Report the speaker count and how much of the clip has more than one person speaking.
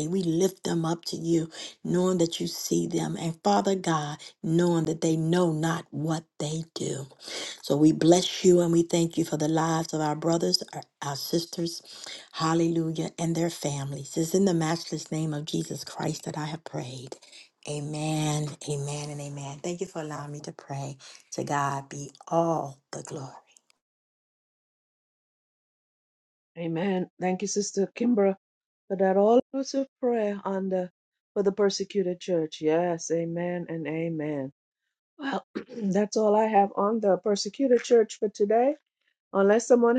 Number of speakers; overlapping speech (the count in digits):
2, no overlap